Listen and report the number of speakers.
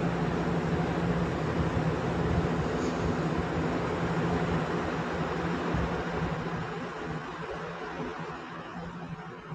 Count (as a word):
zero